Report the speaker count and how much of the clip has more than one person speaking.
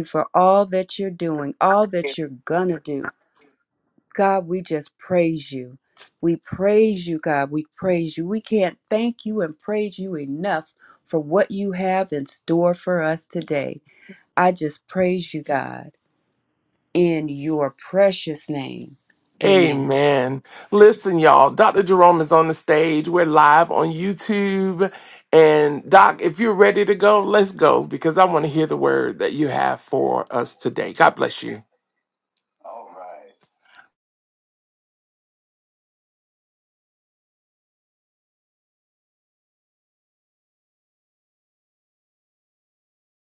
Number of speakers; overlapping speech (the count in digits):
2, about 1%